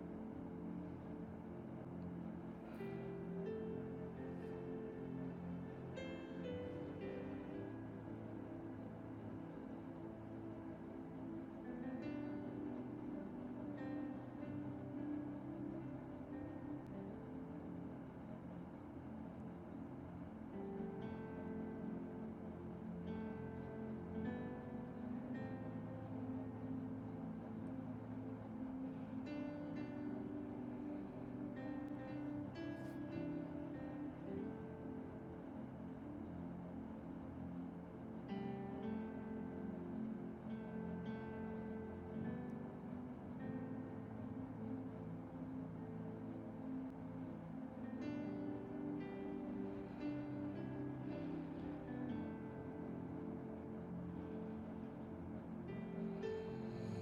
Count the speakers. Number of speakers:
0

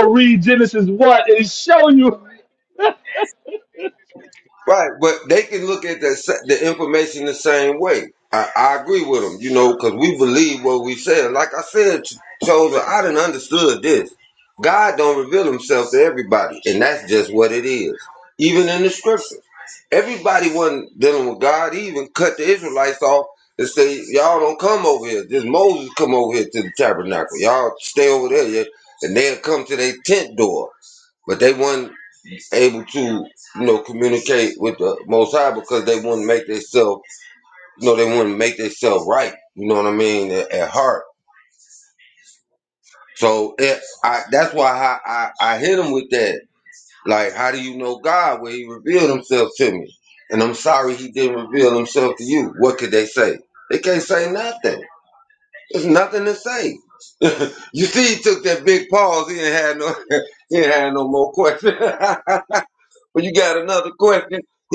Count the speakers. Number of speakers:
2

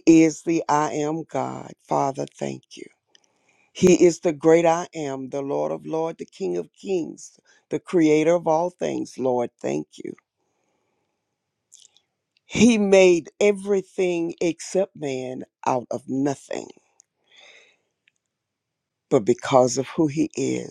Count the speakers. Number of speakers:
1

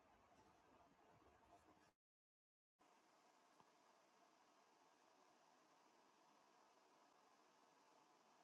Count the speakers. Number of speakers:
0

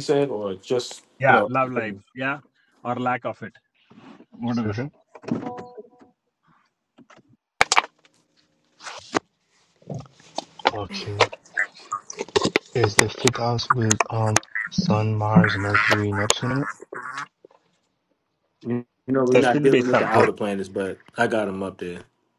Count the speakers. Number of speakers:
3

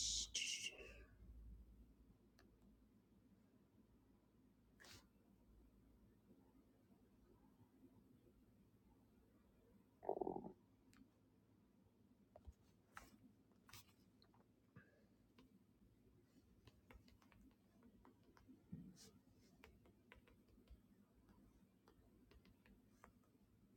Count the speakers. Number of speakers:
0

